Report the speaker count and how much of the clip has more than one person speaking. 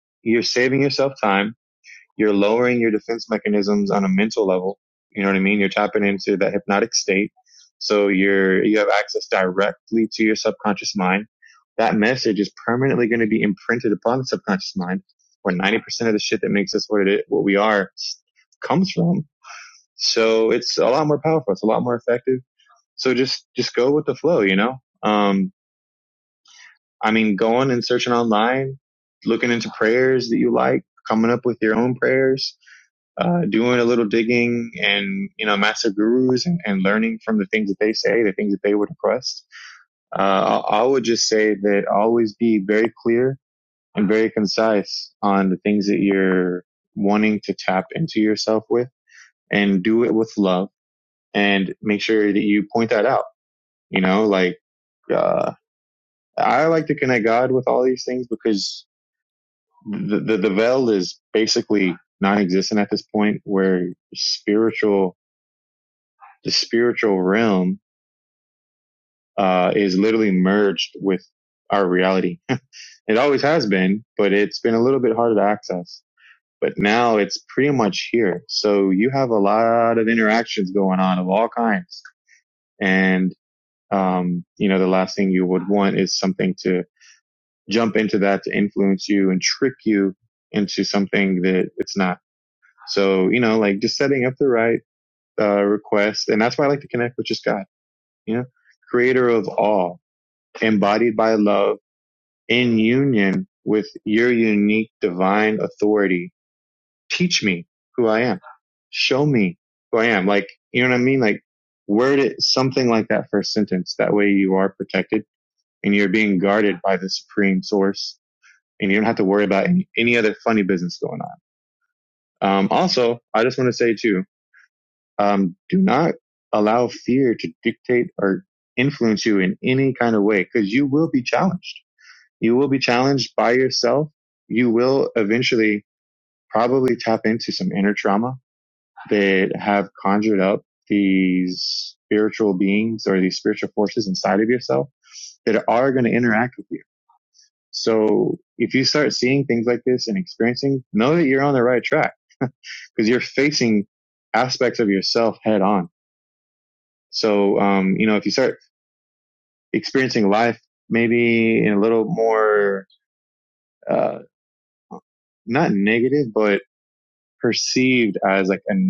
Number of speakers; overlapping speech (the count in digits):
1, no overlap